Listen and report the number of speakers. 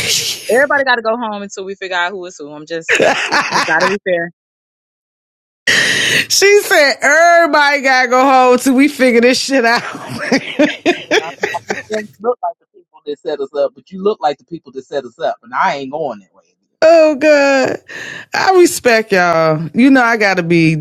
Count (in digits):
3